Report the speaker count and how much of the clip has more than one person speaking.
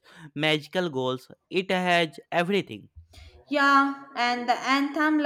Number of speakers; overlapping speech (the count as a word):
two, no overlap